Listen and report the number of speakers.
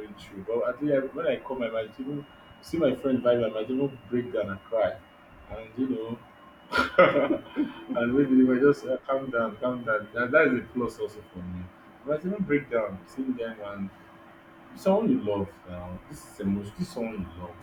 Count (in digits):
1